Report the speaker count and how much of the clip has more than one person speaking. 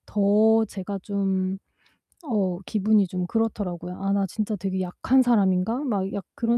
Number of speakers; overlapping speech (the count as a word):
one, no overlap